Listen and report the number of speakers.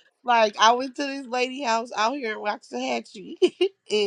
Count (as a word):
one